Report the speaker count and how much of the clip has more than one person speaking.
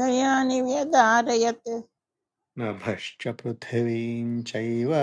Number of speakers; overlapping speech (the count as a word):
two, no overlap